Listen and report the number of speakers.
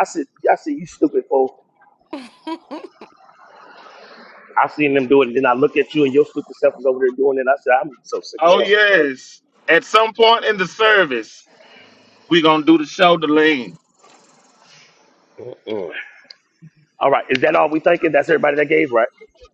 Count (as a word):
two